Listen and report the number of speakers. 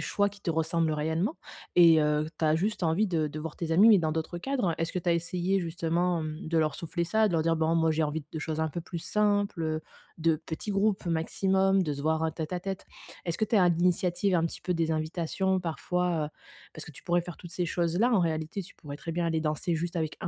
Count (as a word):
one